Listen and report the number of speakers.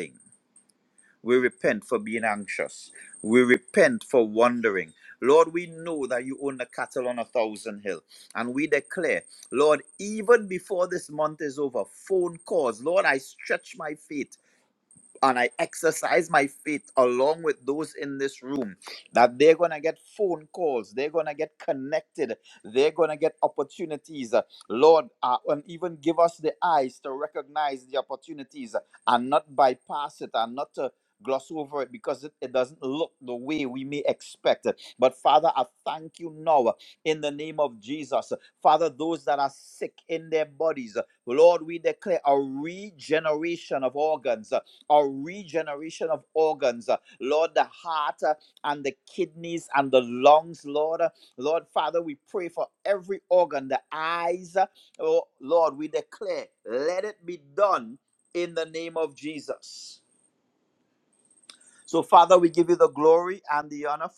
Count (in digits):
1